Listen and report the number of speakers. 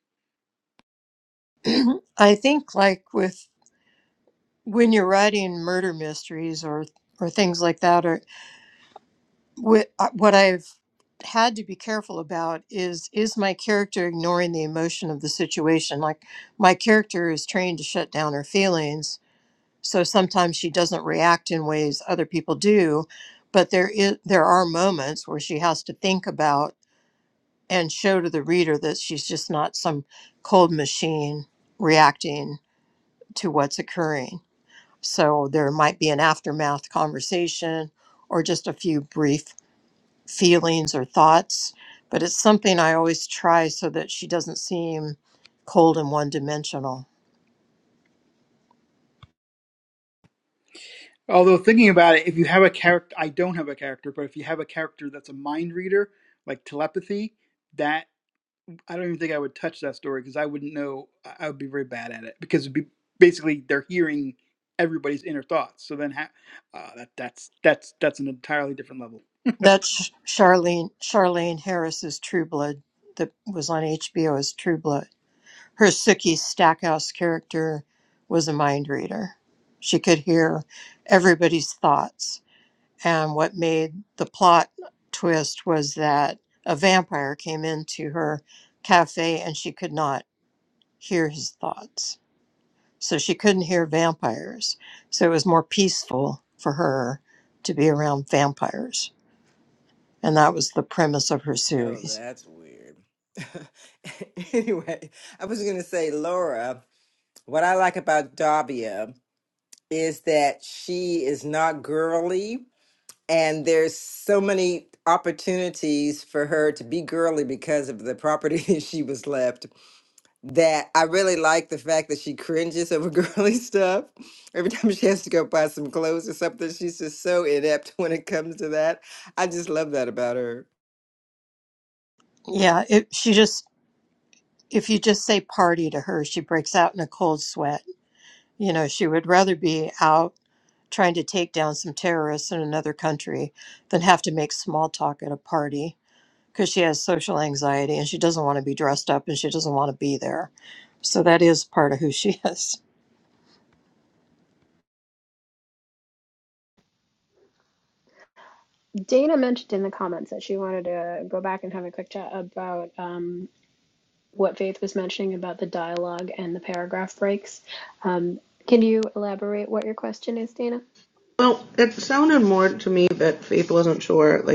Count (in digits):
5